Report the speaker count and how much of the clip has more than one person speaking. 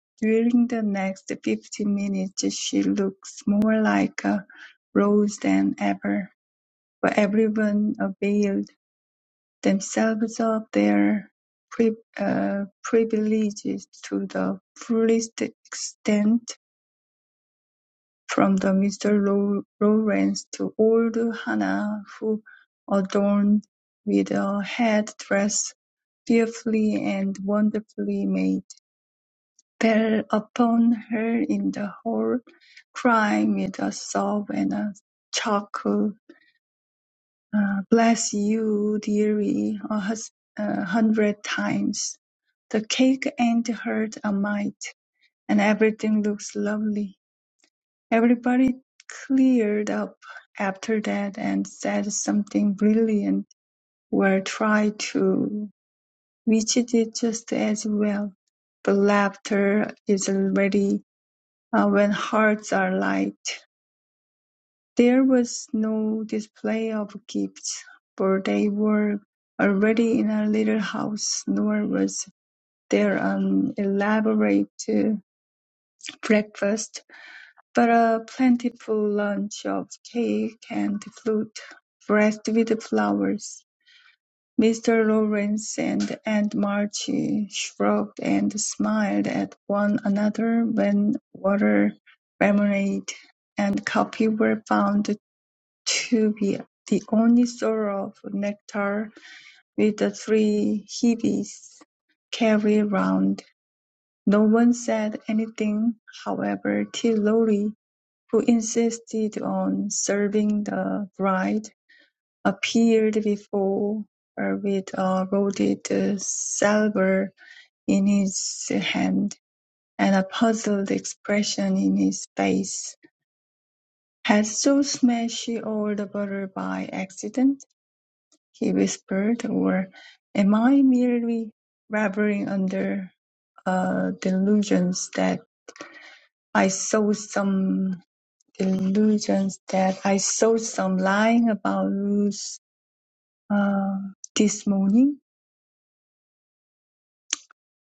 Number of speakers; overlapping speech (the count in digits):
1, no overlap